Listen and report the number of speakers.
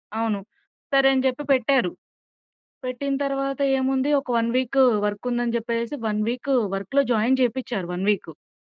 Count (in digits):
1